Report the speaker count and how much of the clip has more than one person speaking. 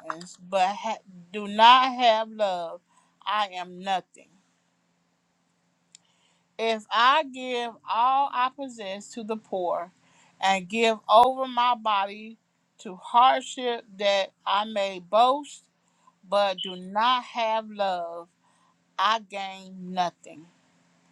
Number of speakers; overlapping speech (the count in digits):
1, no overlap